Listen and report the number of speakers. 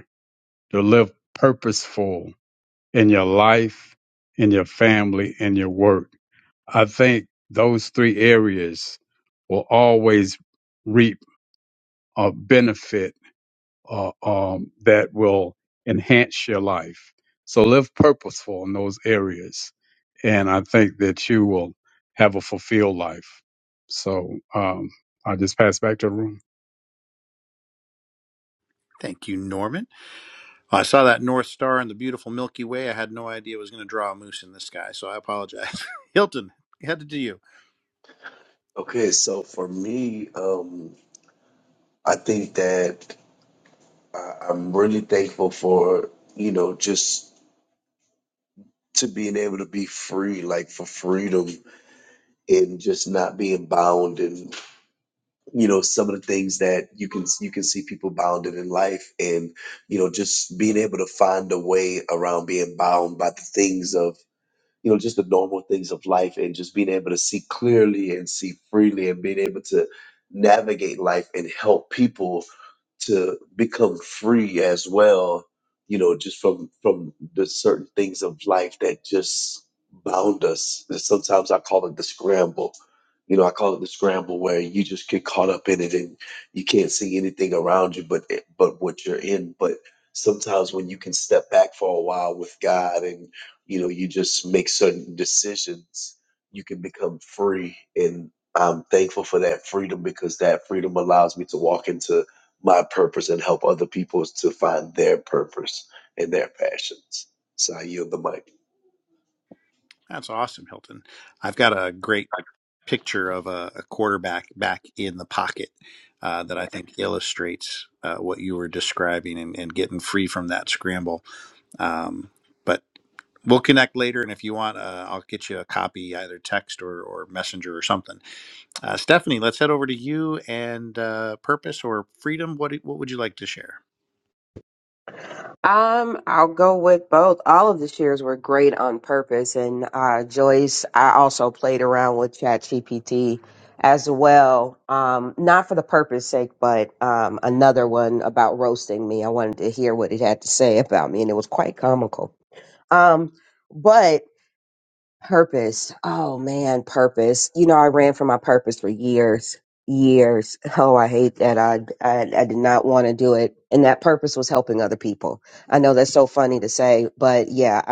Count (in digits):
4